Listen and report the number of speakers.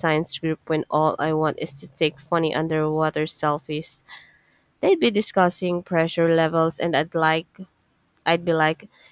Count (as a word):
one